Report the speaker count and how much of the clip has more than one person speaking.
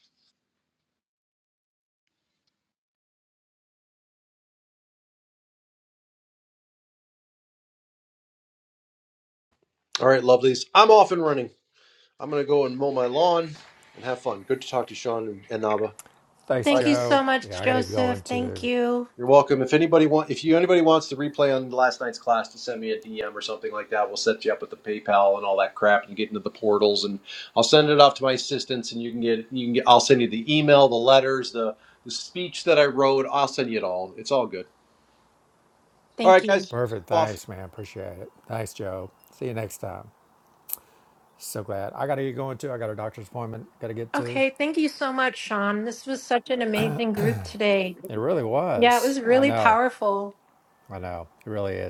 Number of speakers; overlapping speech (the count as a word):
three, about 7%